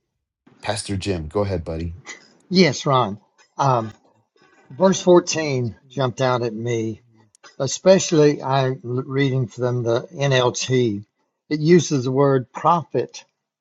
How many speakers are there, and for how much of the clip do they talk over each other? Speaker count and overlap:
2, no overlap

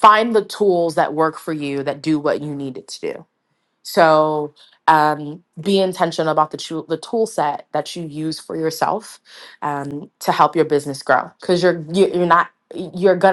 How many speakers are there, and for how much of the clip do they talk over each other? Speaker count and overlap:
1, no overlap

